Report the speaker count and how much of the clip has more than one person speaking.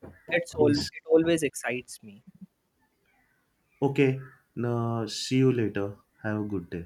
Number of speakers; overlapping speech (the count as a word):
two, about 5%